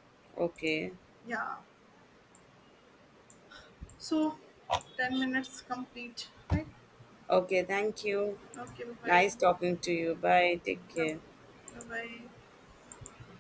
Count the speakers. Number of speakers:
two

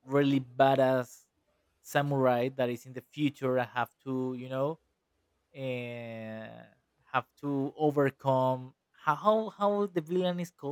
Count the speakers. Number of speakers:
one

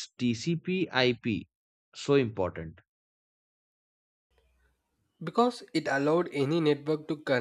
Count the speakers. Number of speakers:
two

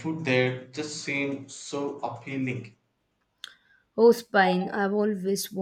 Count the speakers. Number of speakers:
two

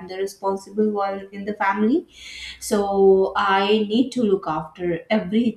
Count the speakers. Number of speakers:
one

